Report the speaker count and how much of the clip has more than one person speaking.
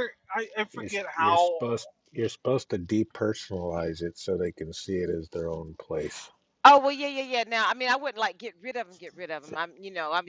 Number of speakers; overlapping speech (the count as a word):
three, about 8%